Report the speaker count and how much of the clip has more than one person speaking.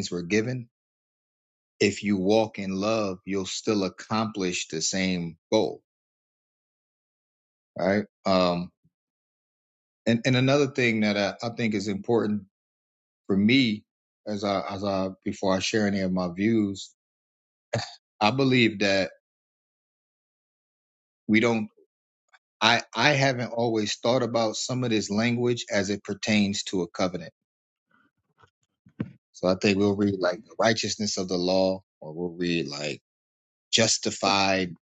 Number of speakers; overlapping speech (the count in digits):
1, no overlap